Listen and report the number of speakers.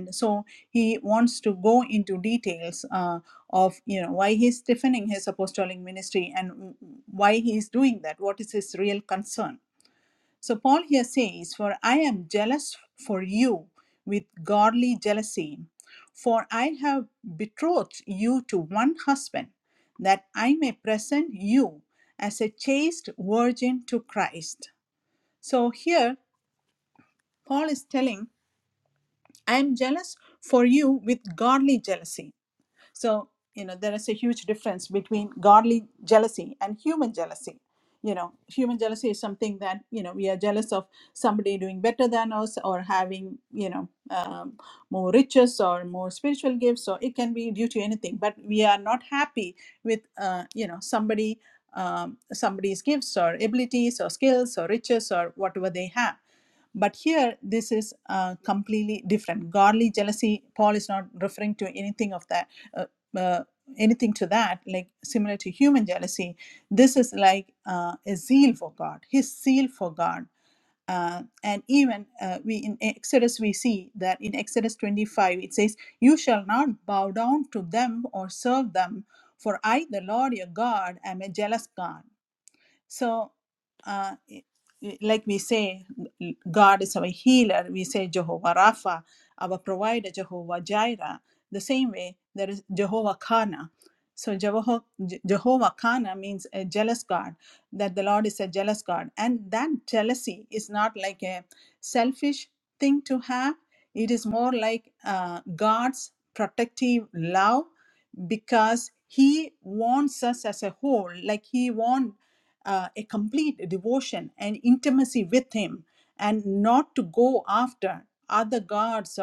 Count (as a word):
one